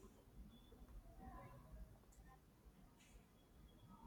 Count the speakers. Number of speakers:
zero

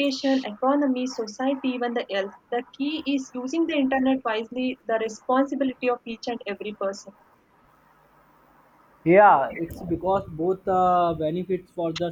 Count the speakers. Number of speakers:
two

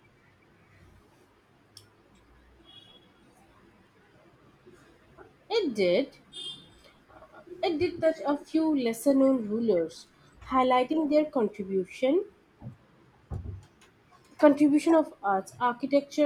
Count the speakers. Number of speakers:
one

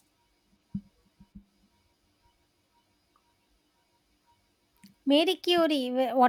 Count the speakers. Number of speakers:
one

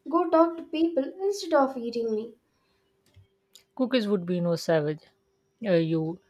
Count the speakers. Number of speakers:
two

